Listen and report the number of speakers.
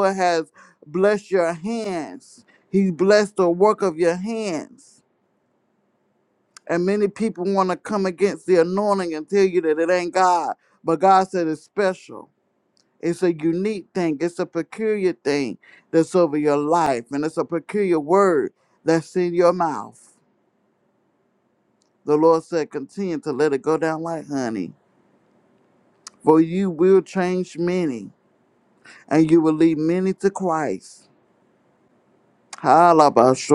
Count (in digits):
1